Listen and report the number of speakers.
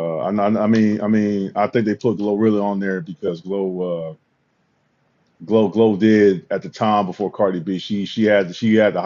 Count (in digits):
1